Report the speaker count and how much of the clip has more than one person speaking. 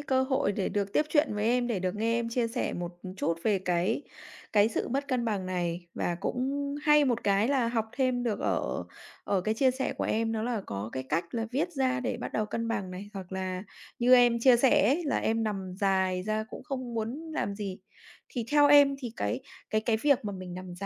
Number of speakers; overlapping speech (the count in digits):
1, no overlap